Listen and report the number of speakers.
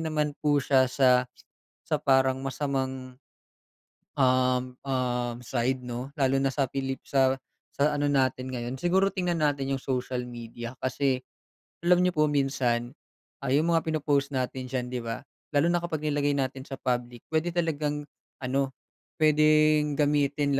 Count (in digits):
1